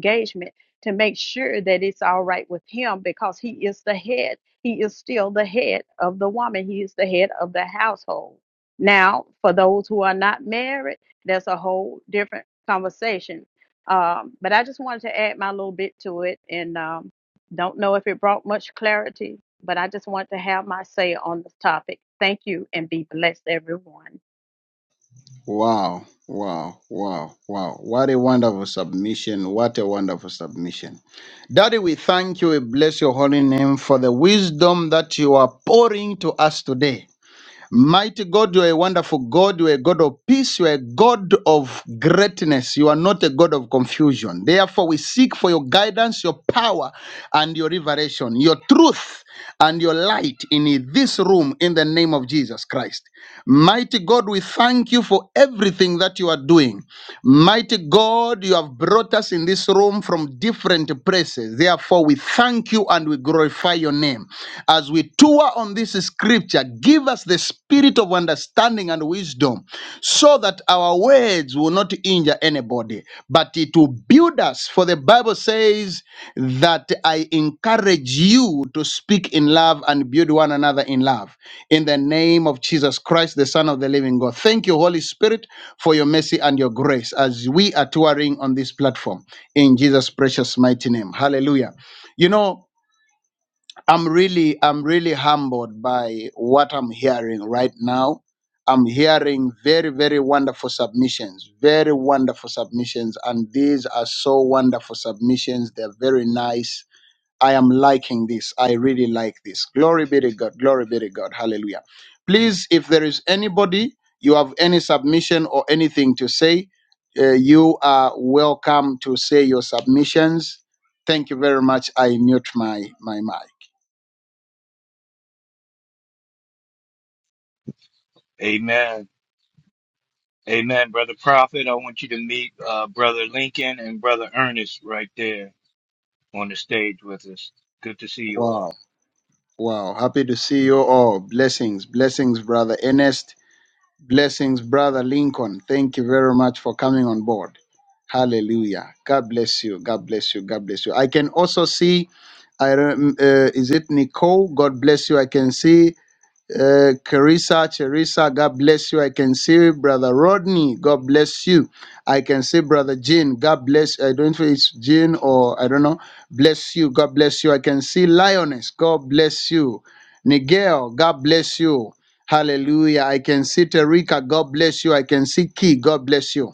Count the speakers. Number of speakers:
3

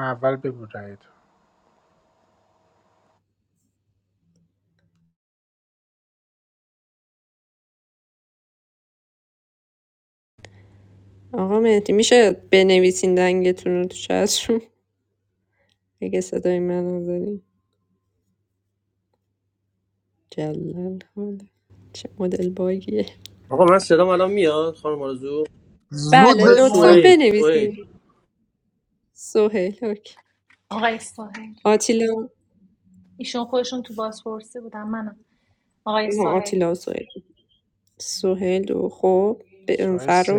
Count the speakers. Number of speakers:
4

